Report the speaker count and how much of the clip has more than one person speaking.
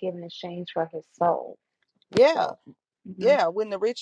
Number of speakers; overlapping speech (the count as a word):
two, about 8%